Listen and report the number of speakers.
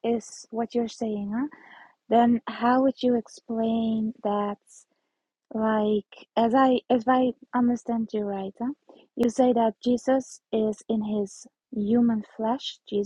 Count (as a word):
one